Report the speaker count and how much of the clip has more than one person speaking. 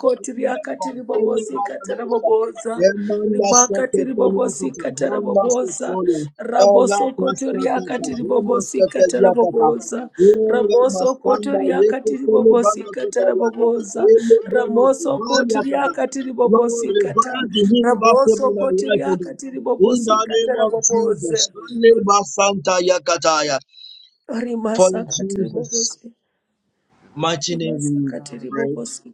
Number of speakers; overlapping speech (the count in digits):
2, about 67%